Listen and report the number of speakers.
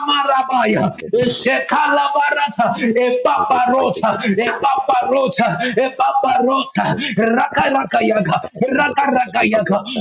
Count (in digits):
1